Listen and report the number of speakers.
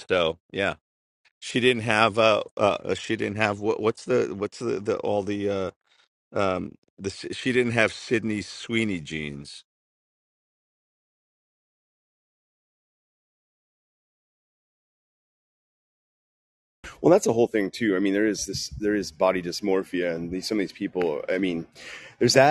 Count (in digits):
2